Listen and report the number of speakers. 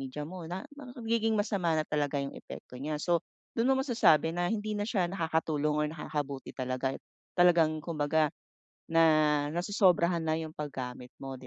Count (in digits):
1